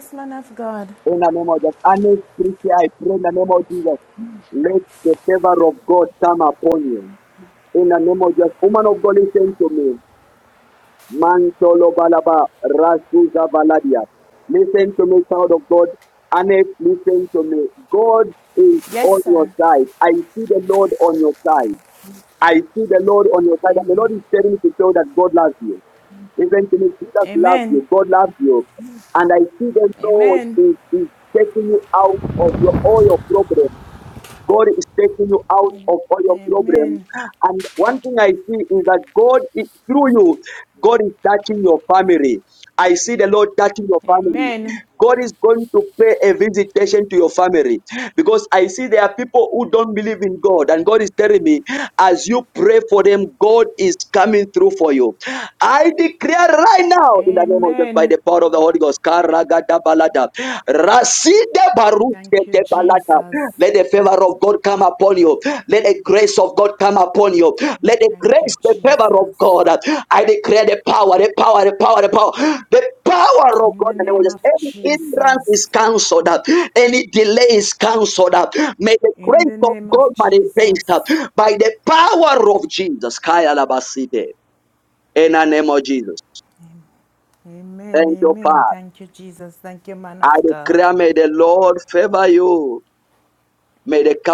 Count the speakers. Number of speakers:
two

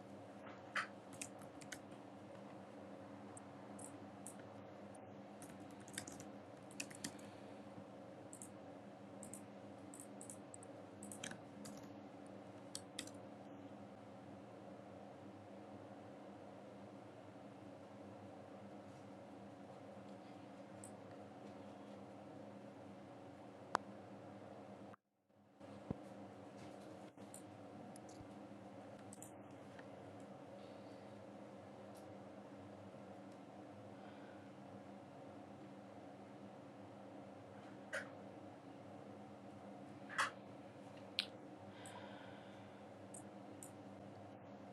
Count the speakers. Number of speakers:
zero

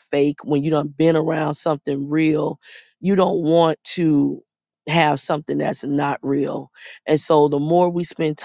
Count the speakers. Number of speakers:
one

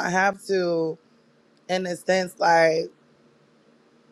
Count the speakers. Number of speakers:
one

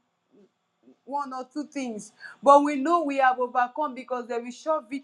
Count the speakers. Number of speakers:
one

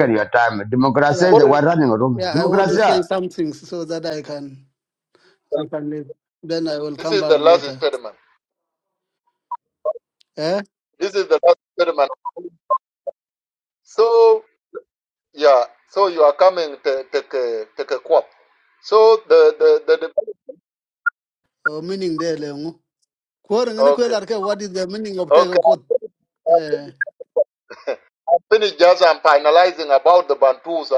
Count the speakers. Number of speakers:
three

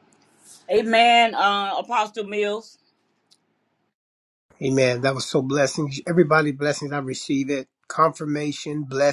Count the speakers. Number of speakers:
two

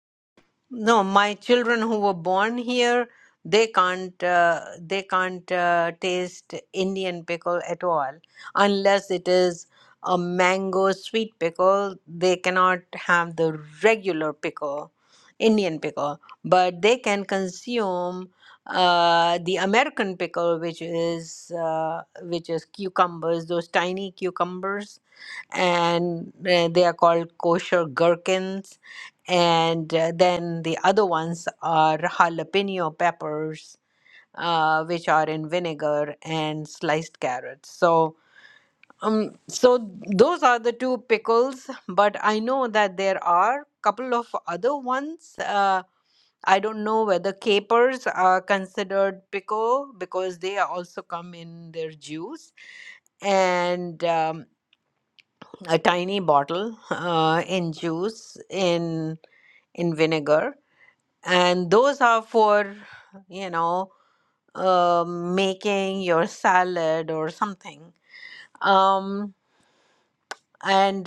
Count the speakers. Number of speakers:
one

